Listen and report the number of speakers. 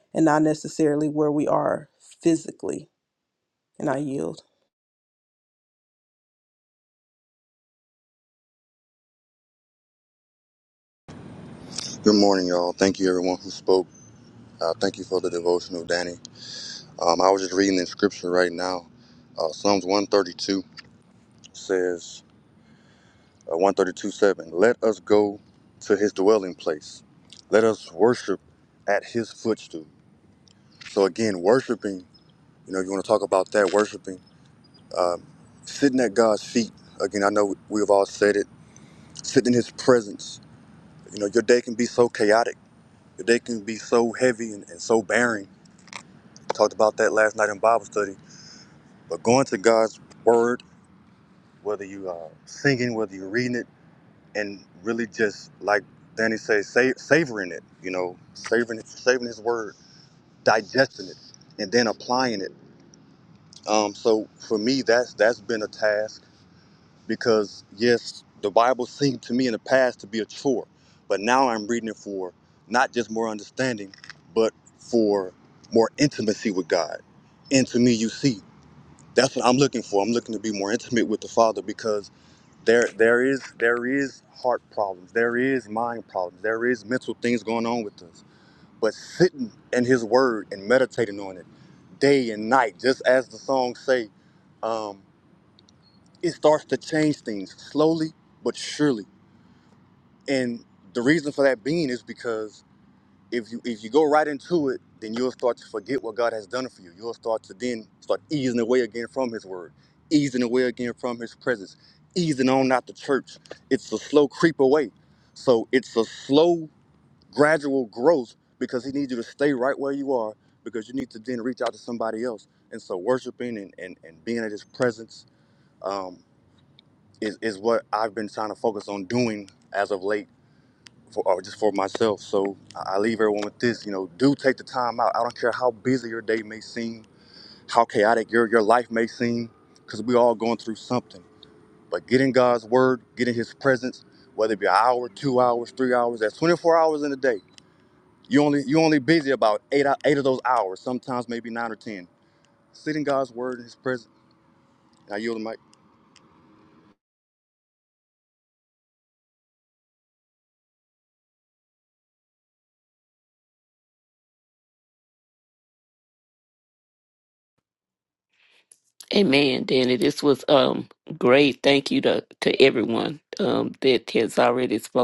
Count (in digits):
3